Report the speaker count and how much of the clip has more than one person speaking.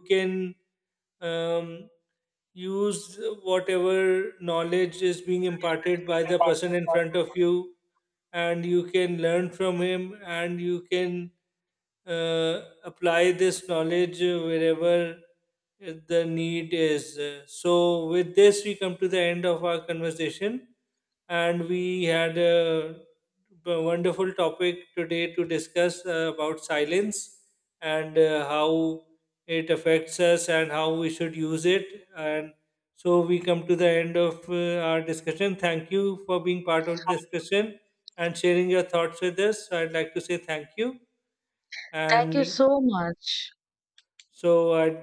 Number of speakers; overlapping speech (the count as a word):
two, about 1%